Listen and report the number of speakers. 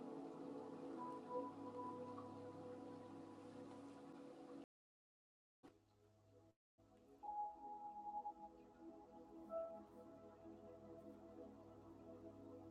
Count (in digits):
0